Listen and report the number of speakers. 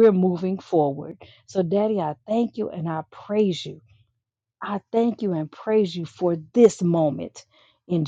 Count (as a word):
one